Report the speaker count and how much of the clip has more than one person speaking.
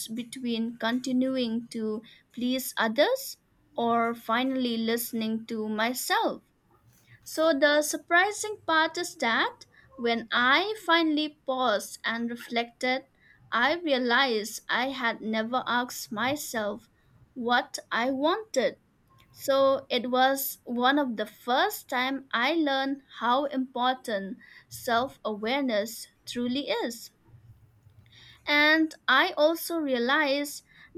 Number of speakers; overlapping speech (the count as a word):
one, no overlap